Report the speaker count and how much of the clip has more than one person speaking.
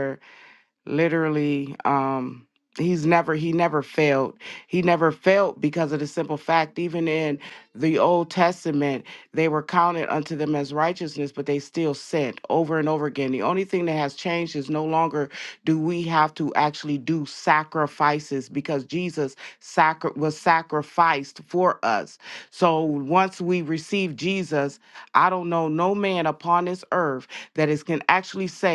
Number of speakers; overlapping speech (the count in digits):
1, no overlap